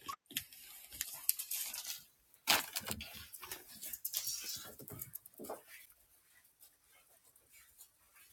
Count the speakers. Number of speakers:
0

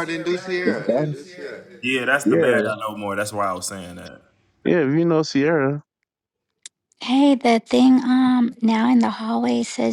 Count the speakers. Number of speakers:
4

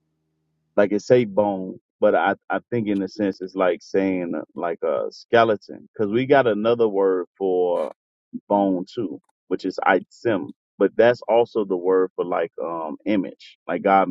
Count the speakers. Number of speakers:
1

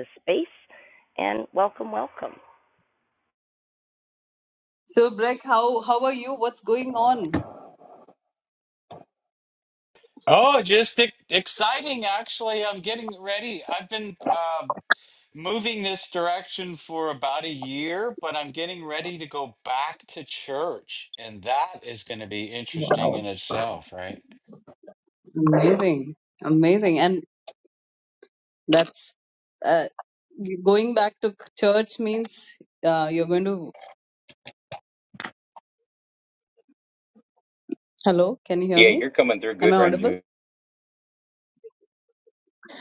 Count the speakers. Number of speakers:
4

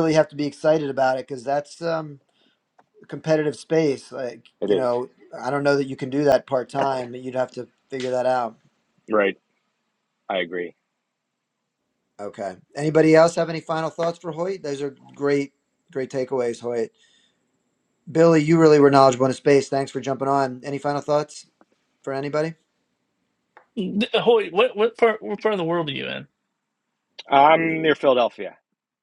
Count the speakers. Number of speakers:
3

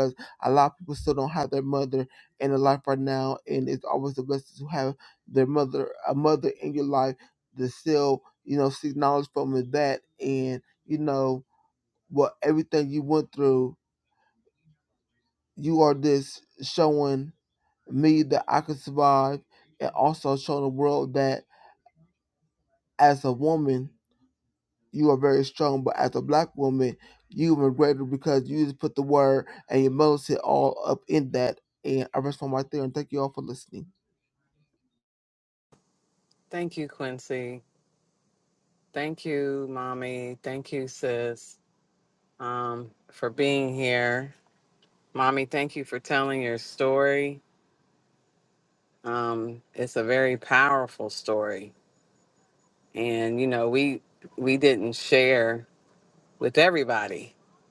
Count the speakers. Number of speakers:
2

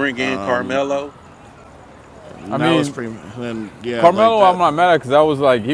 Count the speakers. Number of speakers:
3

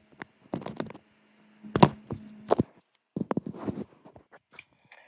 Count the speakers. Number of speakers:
0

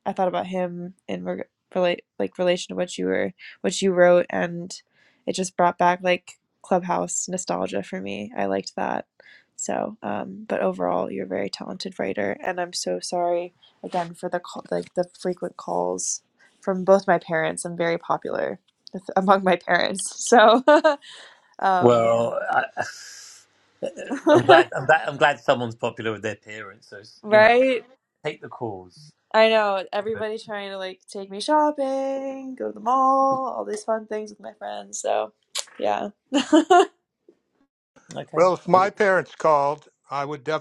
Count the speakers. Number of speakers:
3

